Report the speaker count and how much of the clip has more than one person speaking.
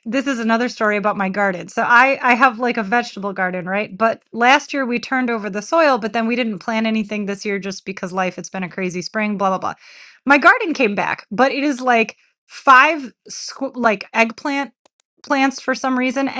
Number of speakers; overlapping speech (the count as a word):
one, no overlap